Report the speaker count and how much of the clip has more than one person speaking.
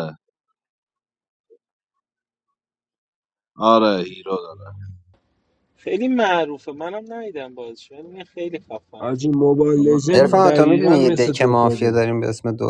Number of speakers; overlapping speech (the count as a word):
four, about 19%